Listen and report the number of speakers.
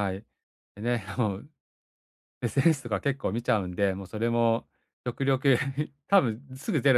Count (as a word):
one